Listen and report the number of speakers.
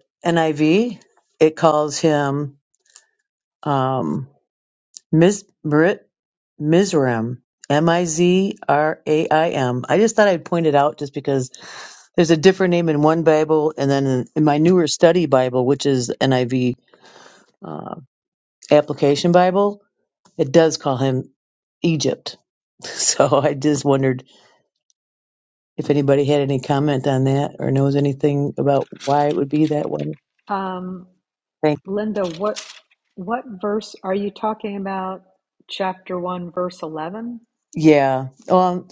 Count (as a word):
two